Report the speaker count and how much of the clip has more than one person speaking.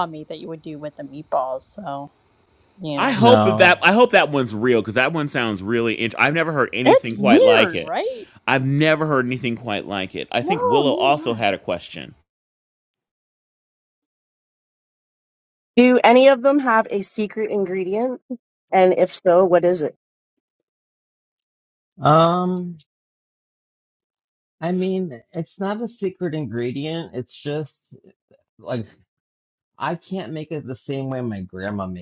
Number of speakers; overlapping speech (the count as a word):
four, about 9%